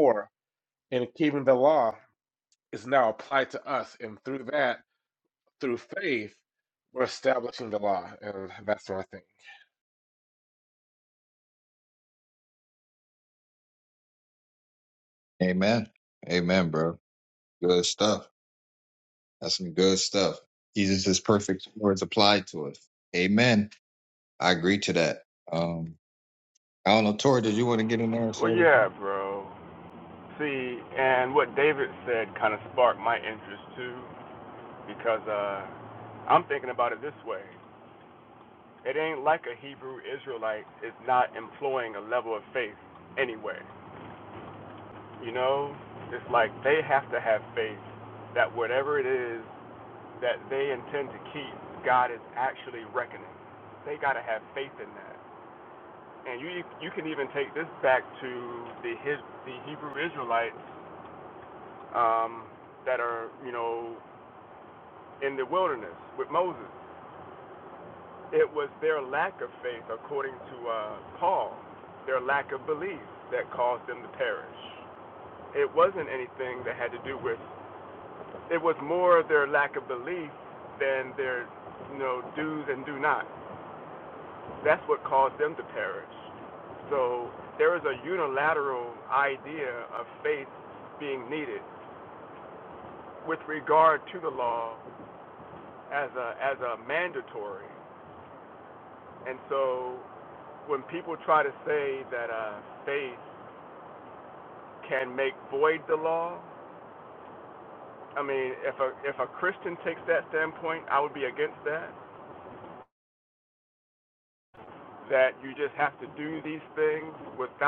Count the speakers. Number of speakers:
3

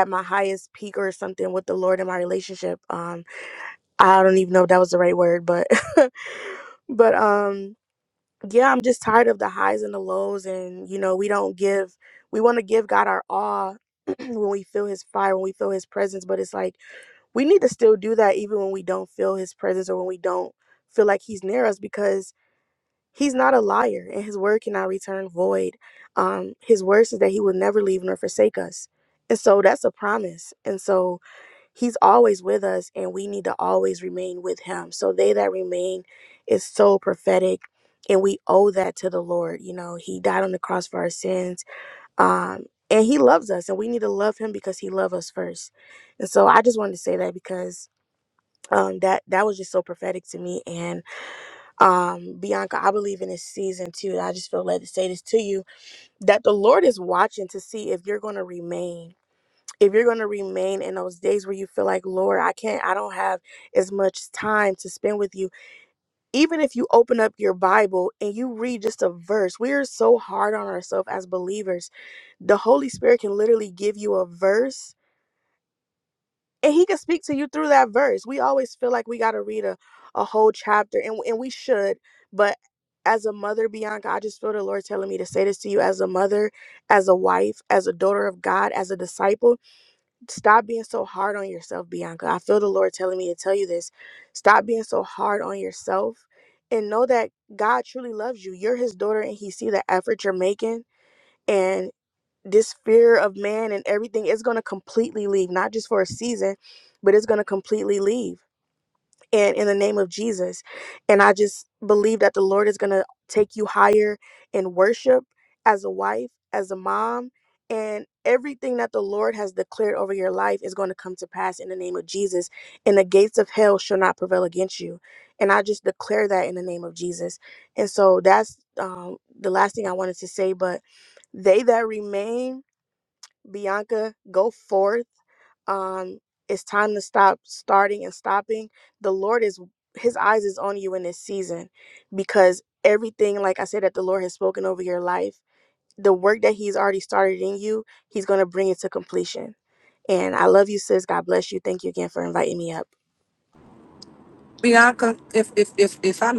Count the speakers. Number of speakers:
2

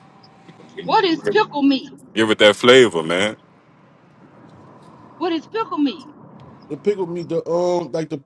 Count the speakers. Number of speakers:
3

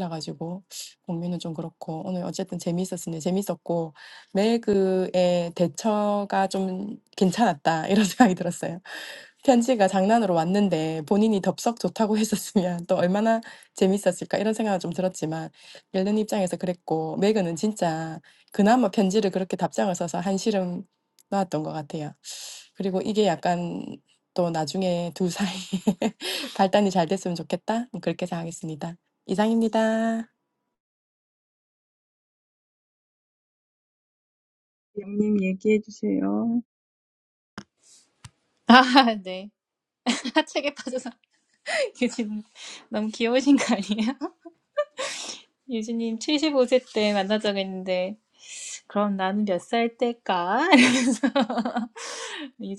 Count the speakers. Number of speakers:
3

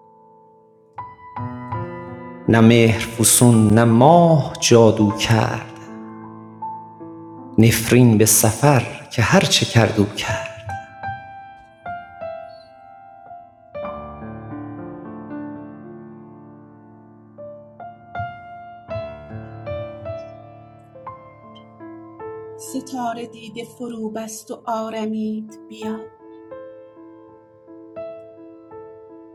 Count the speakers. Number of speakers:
2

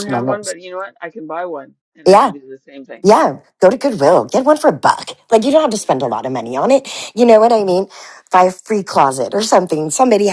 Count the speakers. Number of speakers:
2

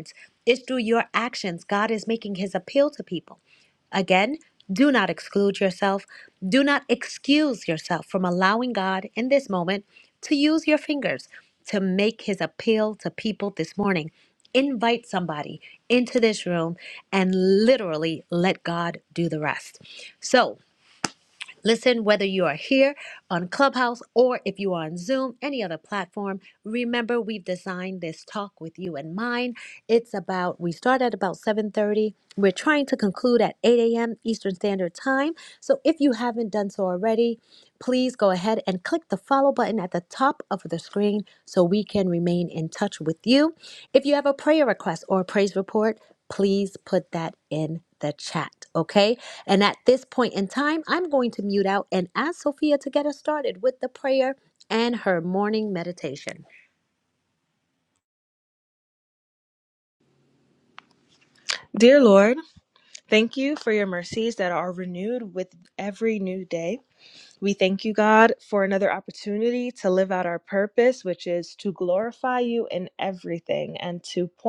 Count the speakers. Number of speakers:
2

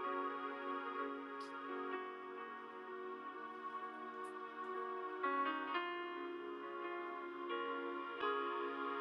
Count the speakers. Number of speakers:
0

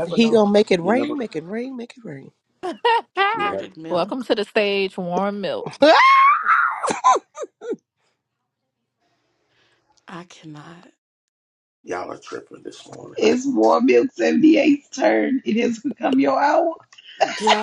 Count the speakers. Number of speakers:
5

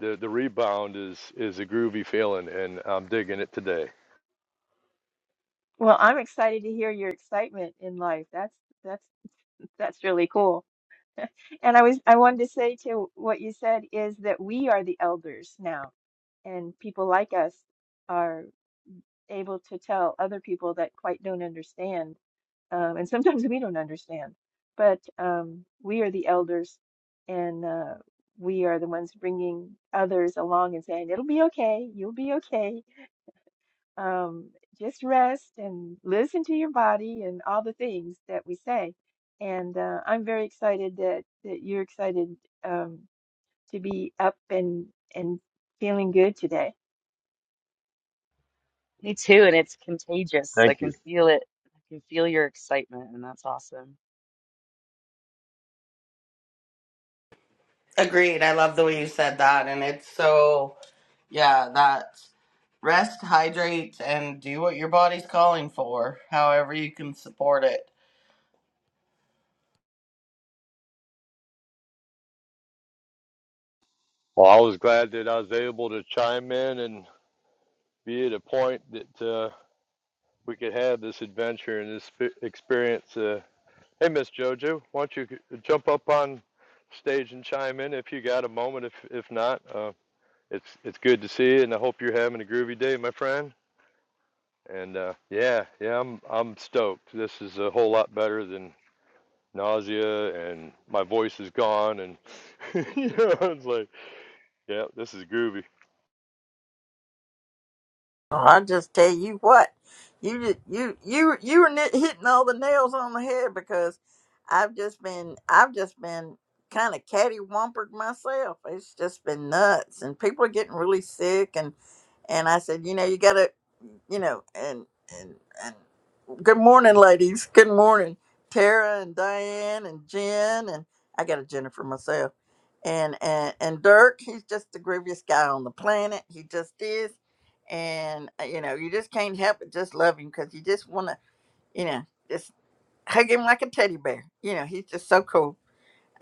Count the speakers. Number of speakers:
5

